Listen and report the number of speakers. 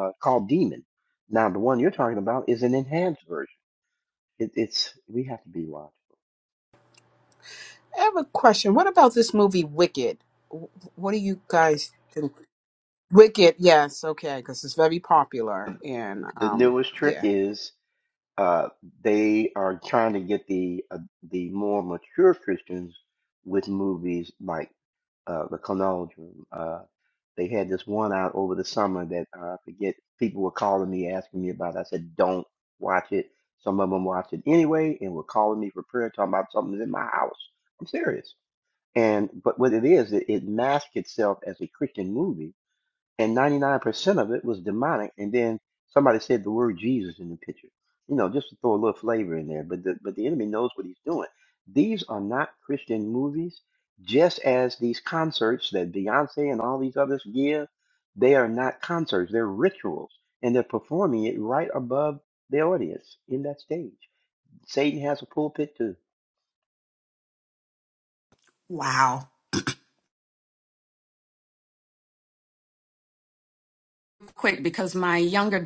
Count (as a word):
three